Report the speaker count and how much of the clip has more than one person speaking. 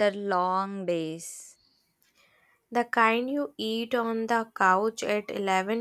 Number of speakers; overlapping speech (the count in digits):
2, no overlap